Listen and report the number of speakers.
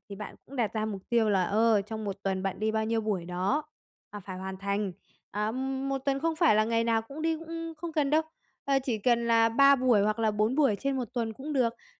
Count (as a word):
one